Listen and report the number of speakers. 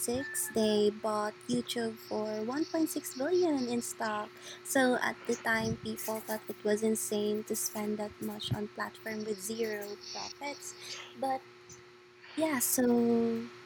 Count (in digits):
1